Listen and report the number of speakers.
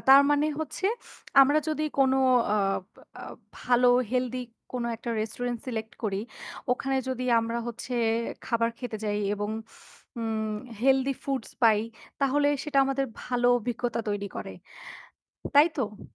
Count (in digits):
1